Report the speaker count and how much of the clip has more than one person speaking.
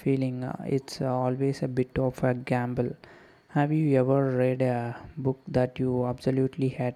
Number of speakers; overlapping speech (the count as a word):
one, no overlap